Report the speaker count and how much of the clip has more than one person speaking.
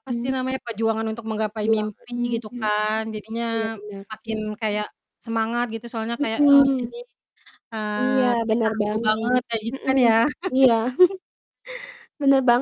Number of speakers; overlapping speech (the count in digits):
2, about 41%